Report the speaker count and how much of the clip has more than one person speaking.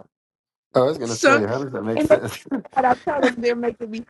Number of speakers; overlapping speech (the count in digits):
2, about 15%